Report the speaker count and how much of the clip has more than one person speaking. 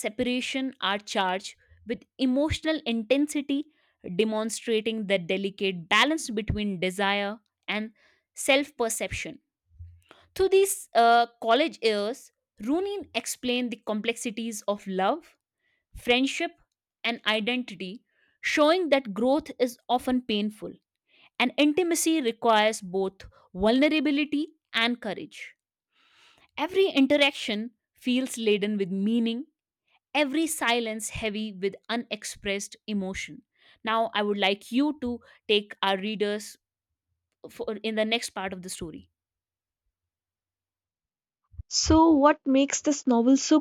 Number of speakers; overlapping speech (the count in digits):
2, no overlap